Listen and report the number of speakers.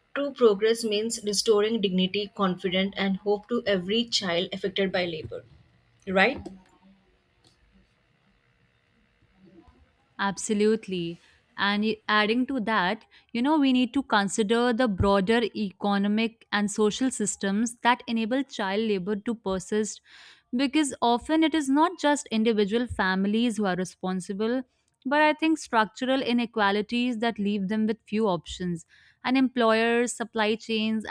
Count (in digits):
2